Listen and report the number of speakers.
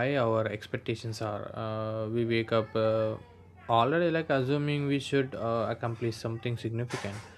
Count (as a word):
one